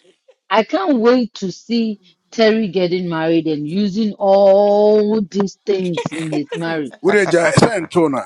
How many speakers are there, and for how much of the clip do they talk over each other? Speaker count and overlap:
2, no overlap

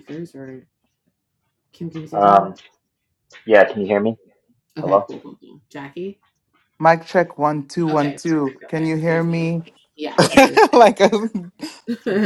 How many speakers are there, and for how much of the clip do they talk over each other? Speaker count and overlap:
3, about 18%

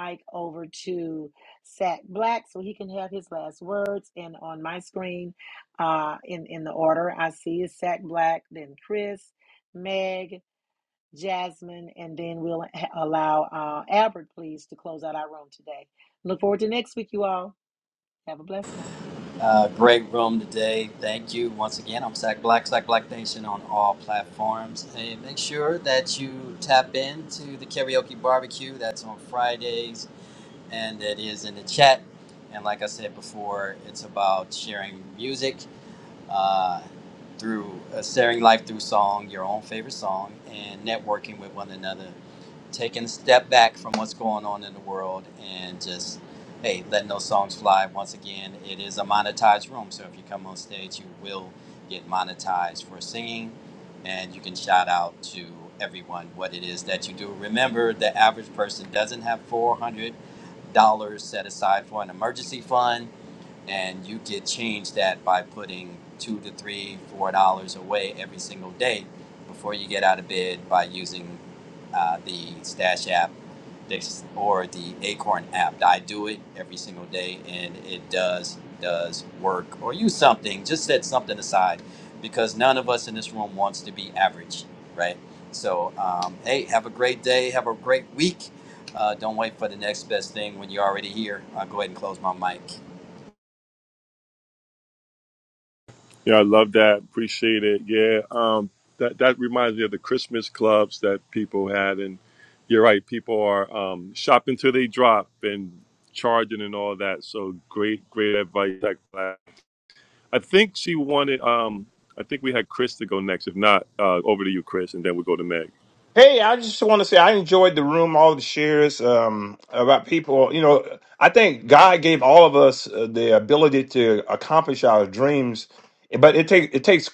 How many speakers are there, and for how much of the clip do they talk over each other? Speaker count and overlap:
4, no overlap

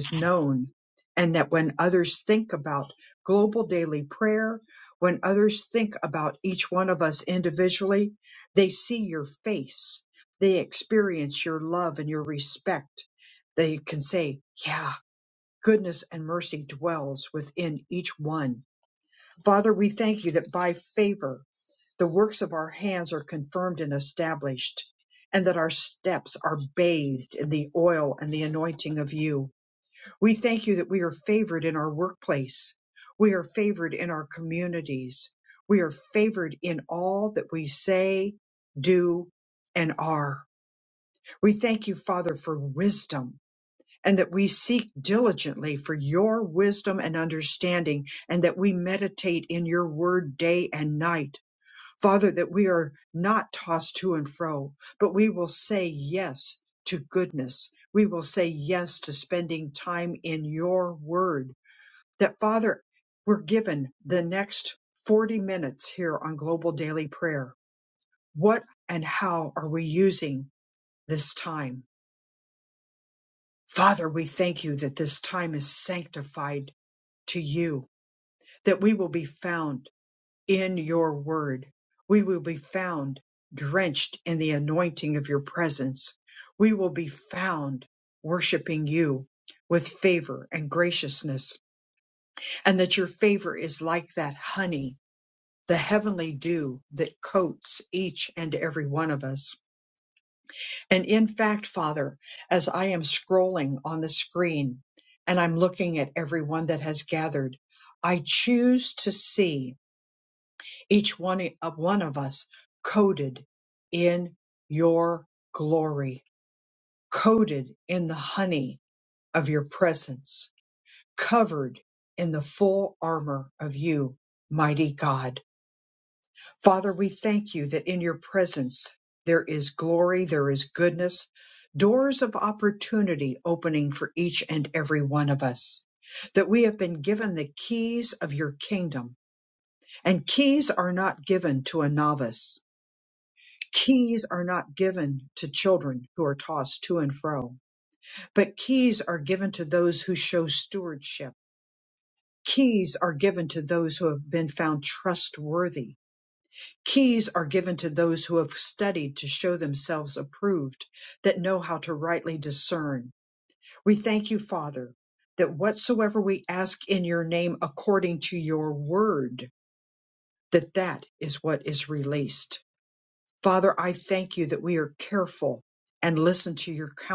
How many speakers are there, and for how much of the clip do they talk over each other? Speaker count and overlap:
1, no overlap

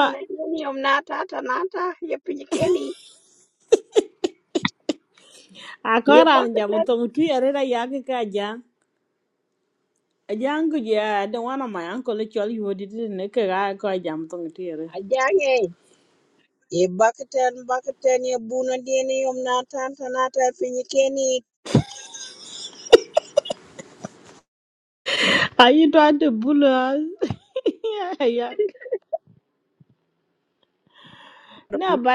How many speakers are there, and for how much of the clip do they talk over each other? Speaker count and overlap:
2, about 3%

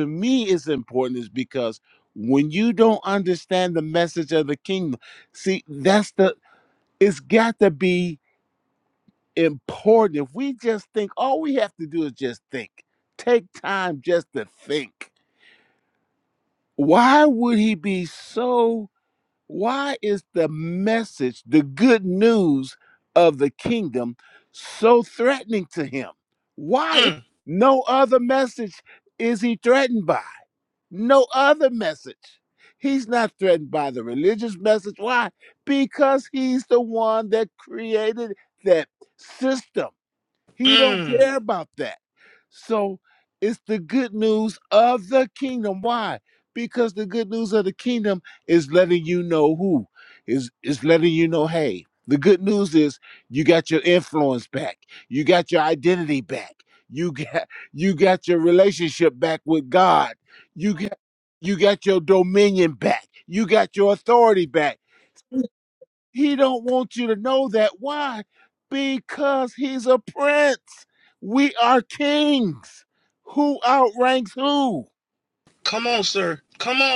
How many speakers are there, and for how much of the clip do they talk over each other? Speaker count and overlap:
2, about 1%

